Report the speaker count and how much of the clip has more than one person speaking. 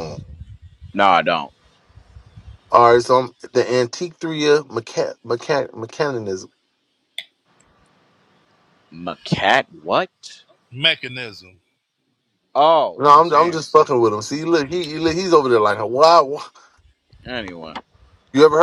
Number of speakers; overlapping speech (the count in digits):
3, about 4%